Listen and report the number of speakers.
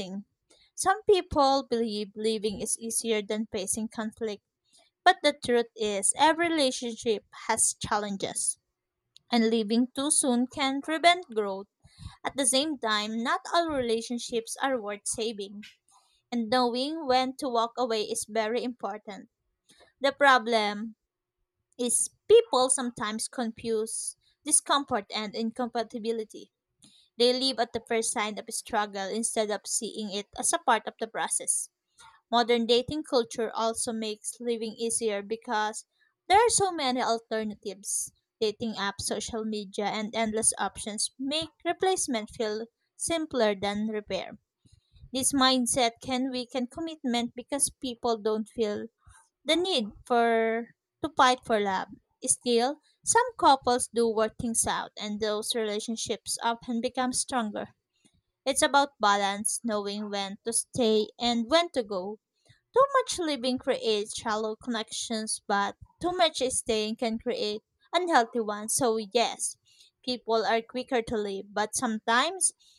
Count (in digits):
1